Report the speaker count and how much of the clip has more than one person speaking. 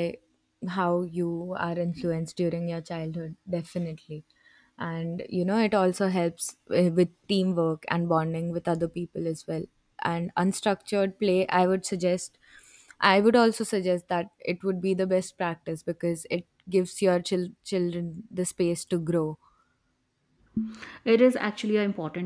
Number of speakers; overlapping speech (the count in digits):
2, no overlap